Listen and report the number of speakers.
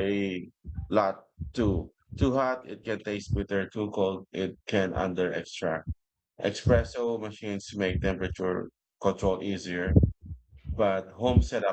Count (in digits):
1